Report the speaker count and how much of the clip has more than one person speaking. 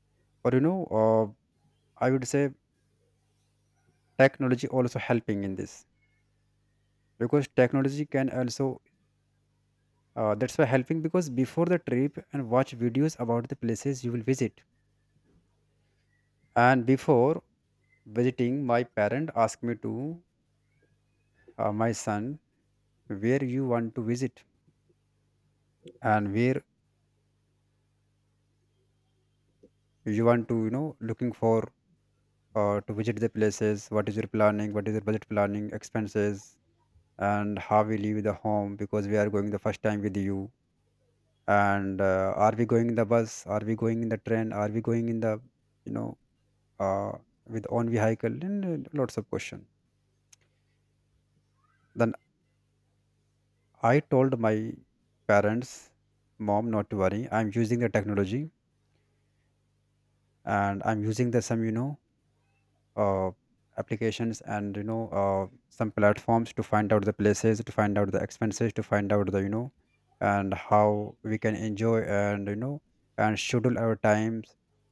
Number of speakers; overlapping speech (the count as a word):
one, no overlap